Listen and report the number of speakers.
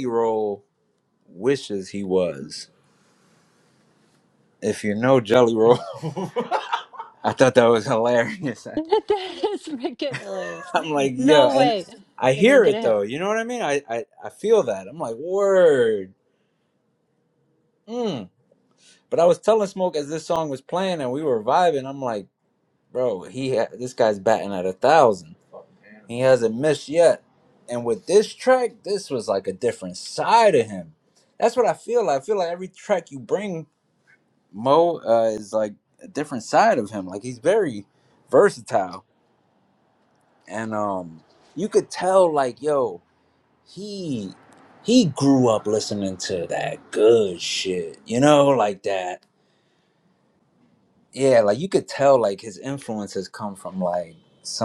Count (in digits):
2